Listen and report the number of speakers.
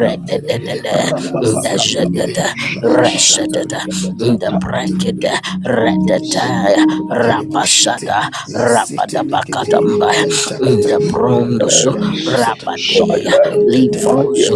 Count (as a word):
three